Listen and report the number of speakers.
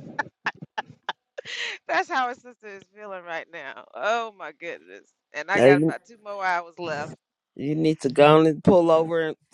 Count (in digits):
2